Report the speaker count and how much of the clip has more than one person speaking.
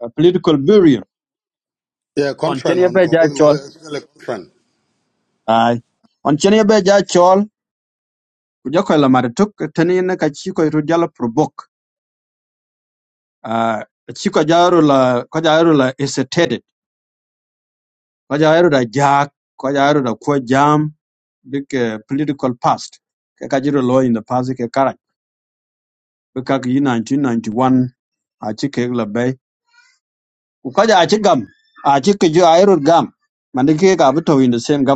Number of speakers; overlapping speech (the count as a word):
two, about 3%